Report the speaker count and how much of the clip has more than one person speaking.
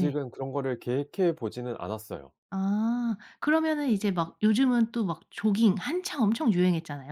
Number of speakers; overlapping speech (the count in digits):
2, about 2%